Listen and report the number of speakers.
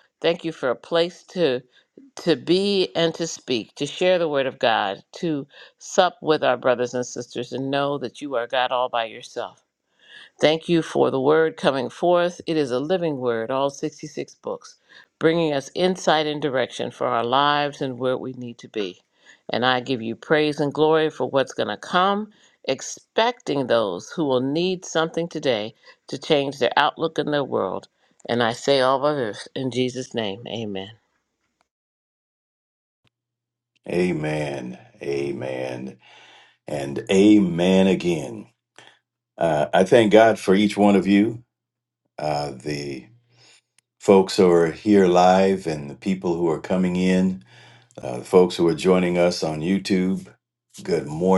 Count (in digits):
2